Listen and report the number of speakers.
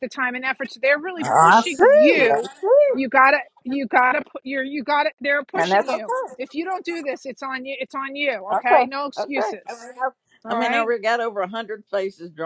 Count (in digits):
2